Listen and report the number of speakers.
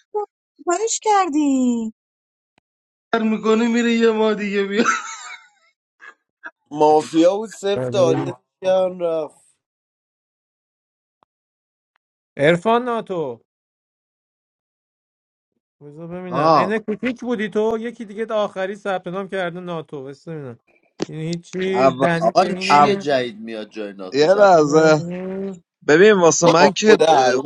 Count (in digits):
6